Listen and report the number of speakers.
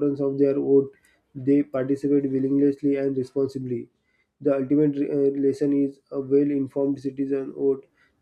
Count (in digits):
1